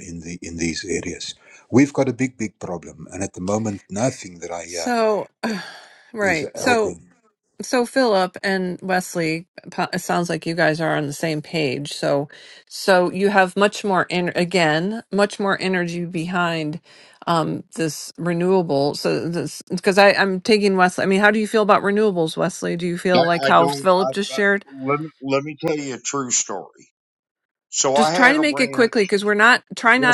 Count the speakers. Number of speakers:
3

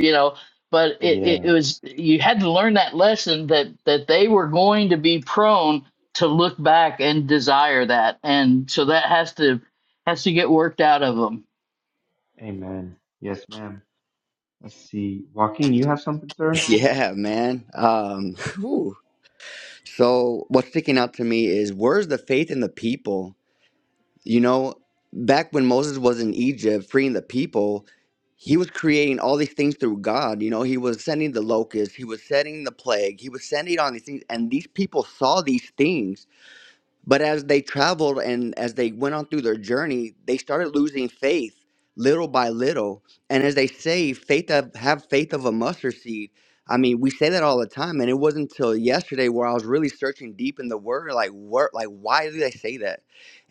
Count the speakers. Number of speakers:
3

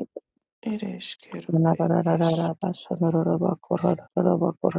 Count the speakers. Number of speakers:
2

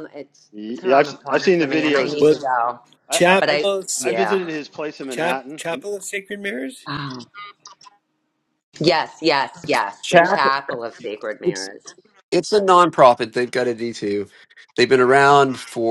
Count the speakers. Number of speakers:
4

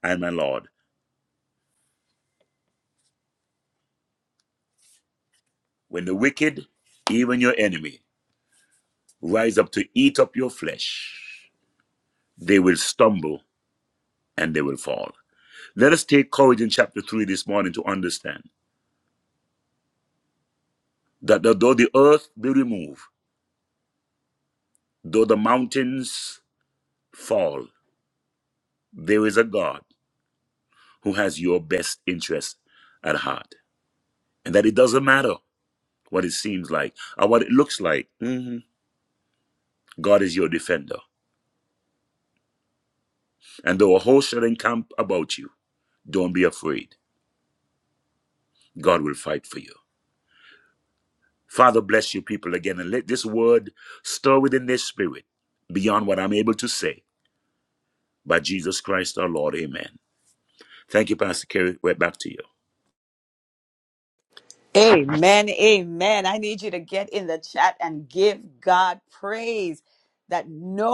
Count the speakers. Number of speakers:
2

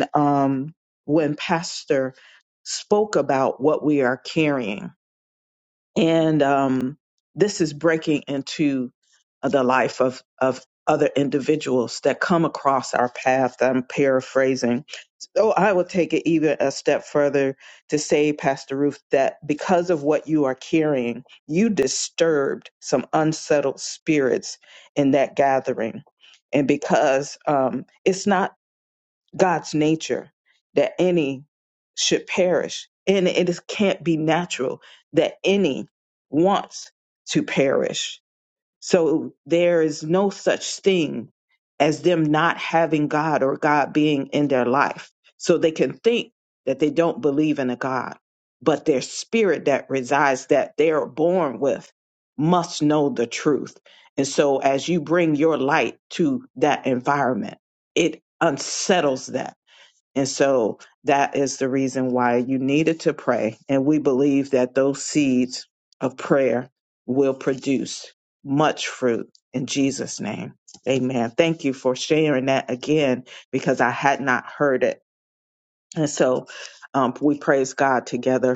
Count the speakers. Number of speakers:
1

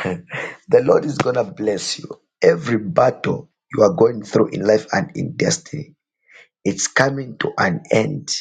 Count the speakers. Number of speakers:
1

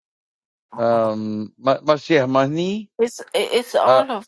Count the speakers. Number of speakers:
2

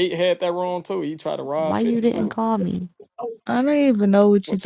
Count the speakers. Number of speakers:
3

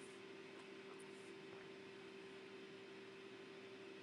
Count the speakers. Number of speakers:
0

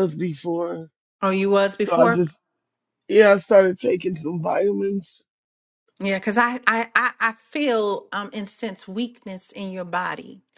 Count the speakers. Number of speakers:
2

